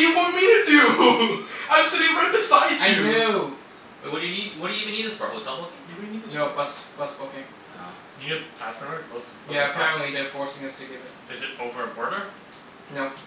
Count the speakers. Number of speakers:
4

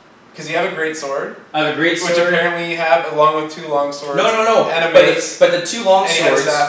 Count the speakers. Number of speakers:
2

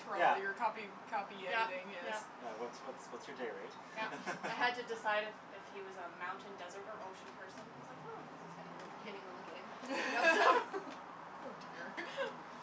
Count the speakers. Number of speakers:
3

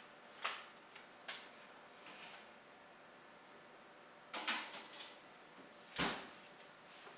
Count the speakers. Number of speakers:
0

